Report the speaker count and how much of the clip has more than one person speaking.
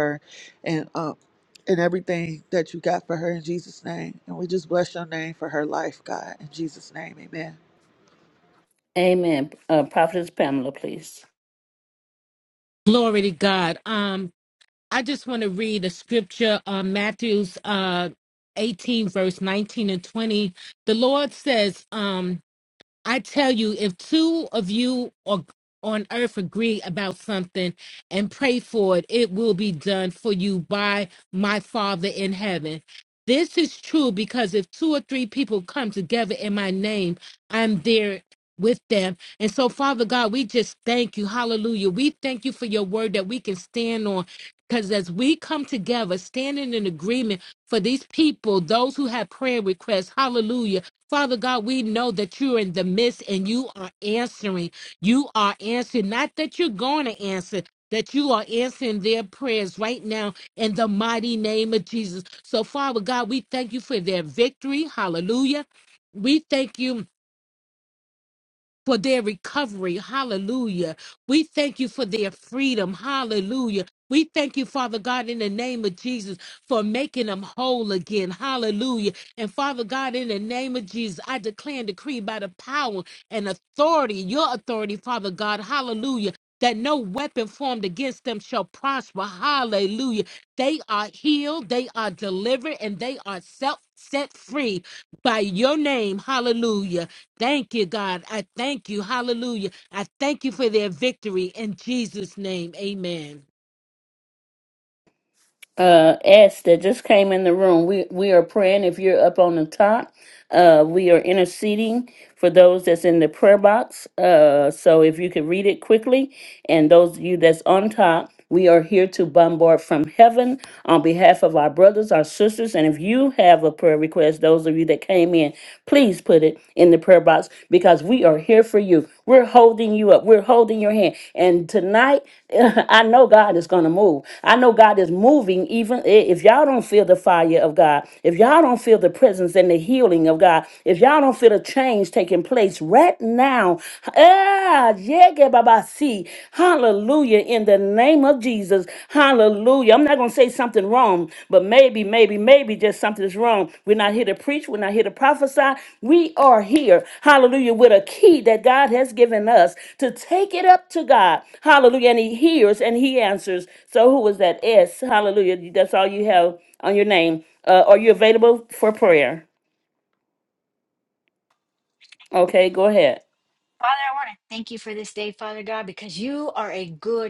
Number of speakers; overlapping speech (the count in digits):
4, no overlap